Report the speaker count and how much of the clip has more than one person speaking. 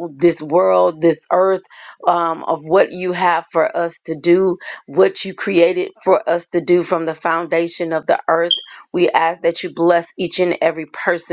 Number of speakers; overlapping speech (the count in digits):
1, no overlap